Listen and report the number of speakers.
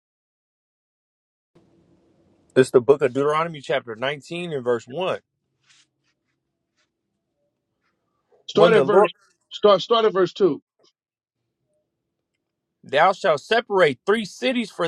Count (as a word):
two